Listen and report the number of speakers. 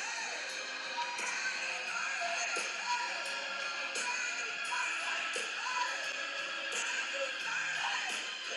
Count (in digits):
0